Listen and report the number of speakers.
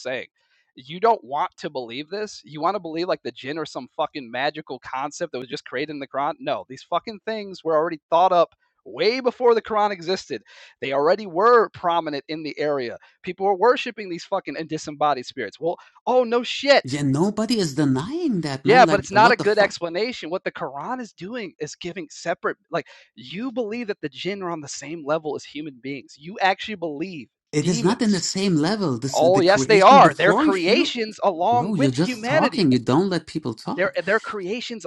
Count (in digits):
2